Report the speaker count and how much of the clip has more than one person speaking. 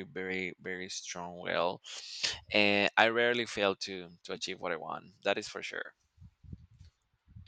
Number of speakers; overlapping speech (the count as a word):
one, no overlap